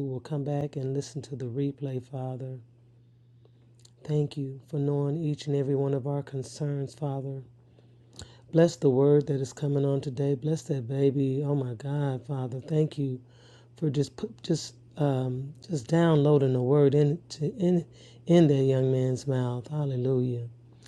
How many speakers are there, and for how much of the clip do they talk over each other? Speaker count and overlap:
one, no overlap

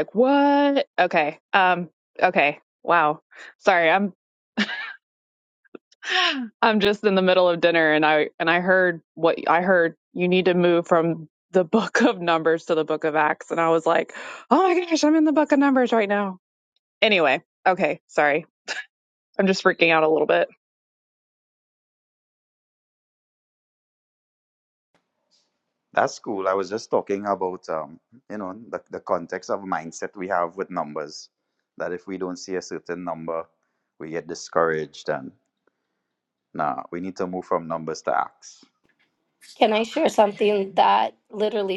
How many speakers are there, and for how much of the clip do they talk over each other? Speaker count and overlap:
three, no overlap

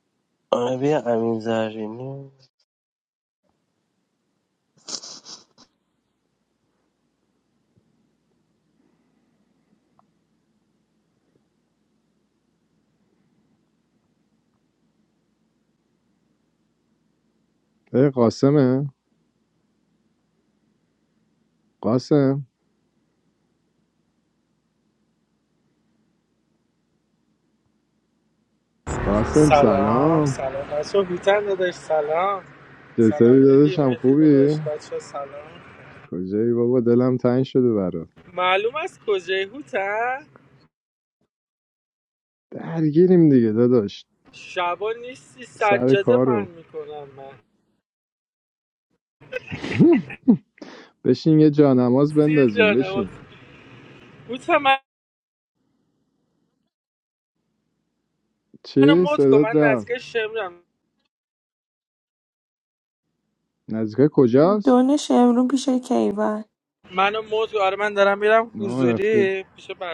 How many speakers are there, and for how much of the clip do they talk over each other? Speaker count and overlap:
four, about 9%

